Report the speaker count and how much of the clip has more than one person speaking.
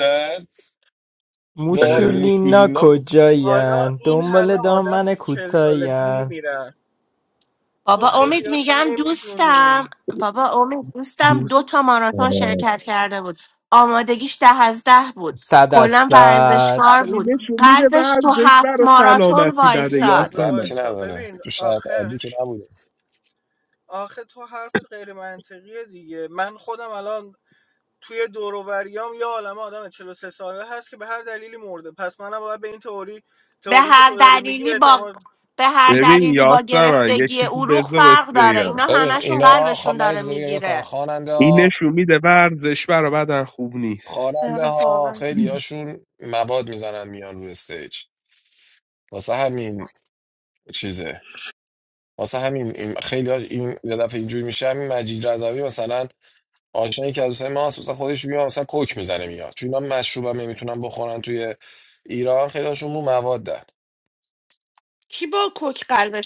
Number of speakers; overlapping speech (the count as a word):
five, about 31%